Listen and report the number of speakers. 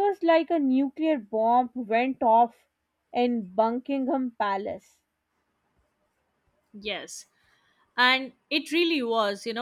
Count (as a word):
two